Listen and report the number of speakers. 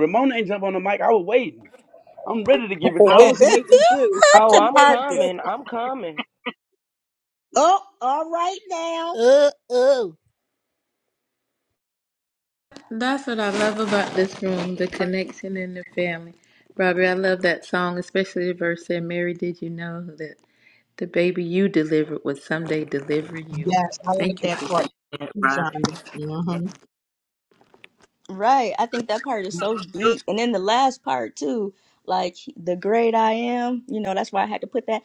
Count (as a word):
six